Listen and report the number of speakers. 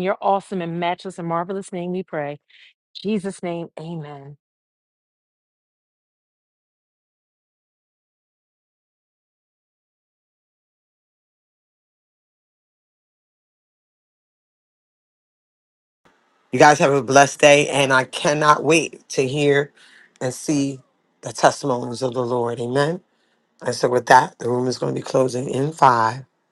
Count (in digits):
2